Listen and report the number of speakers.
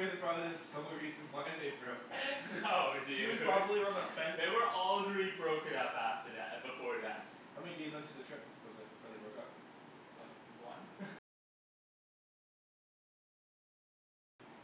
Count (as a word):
two